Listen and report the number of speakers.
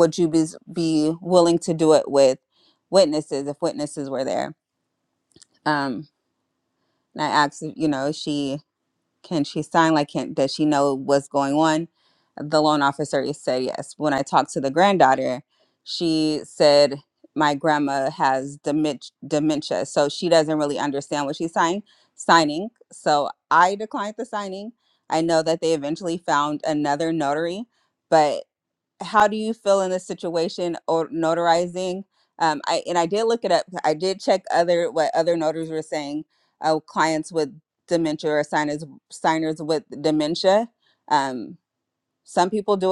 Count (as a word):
one